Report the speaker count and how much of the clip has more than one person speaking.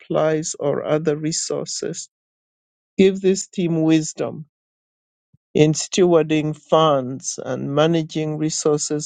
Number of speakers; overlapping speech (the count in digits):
1, no overlap